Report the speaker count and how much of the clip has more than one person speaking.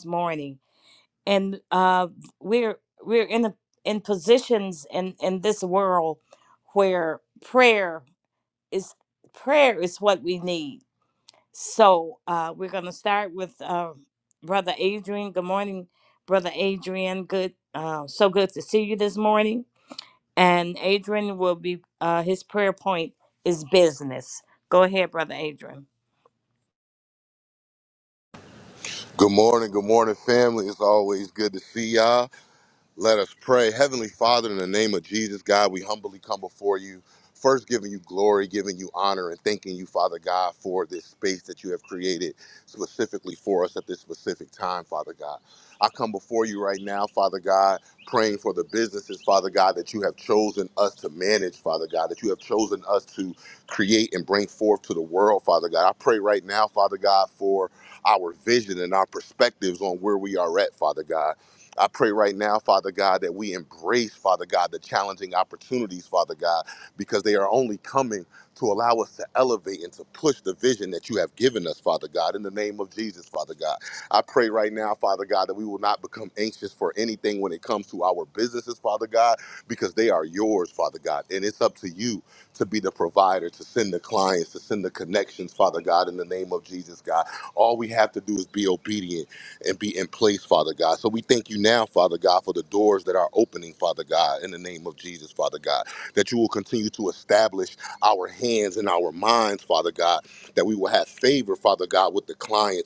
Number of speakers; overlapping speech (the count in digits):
2, no overlap